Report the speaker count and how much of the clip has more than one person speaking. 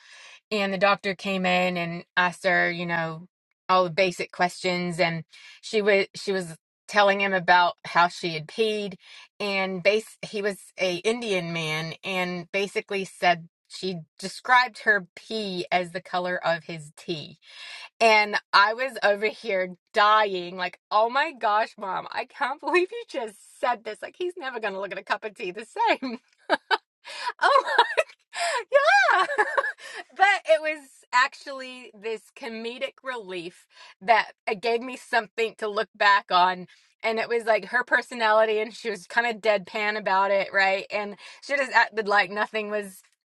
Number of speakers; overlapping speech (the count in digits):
1, no overlap